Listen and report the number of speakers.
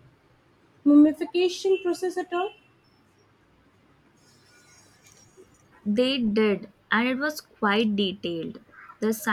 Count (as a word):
two